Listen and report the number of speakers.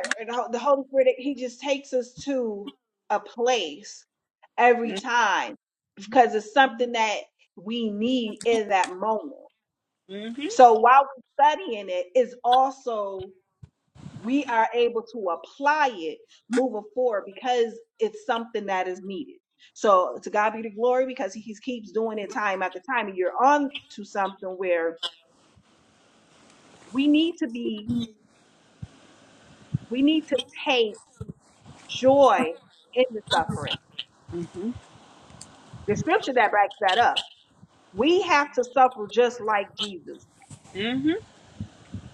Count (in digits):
2